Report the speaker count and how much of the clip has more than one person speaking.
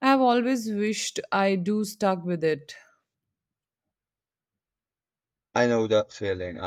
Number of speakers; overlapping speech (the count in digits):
2, no overlap